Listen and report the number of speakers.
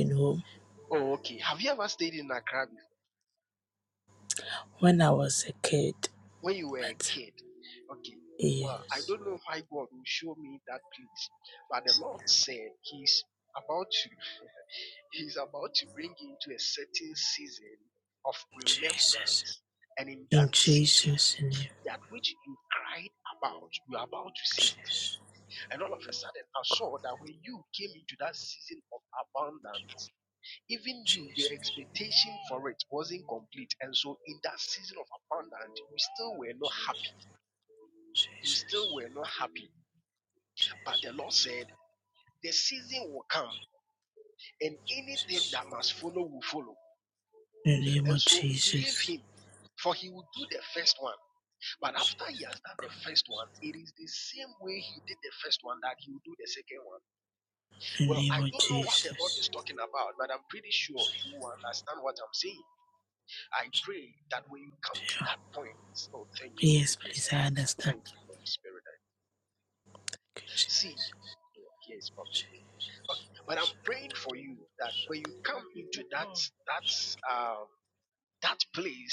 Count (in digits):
2